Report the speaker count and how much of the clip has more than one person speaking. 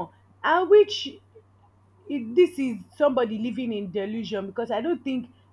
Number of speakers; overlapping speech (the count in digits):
1, no overlap